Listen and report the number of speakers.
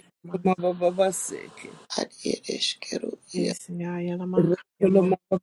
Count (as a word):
three